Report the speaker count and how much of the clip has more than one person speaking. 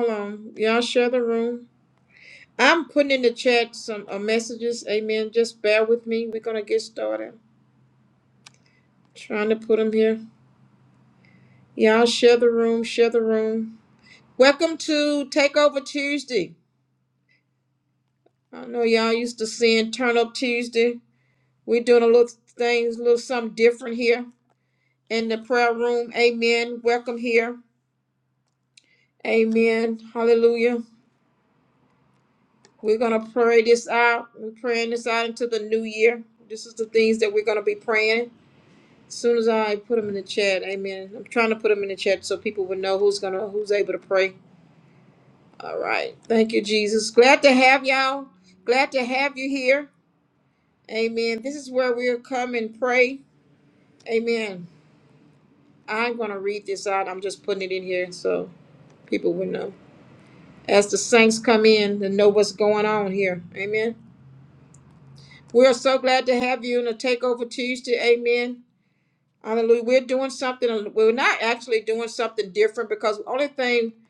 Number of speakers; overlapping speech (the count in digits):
1, no overlap